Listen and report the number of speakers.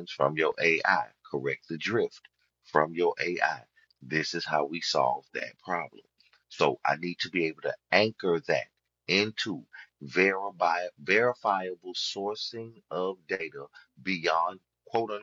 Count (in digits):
1